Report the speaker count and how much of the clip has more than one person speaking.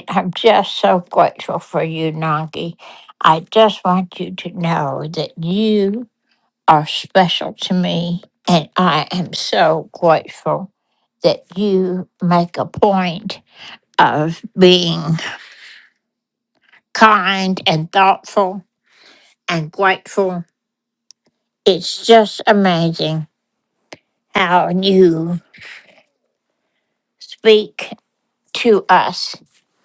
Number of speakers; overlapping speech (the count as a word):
one, no overlap